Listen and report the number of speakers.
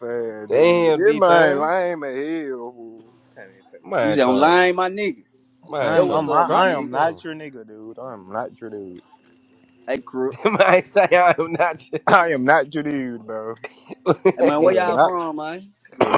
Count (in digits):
3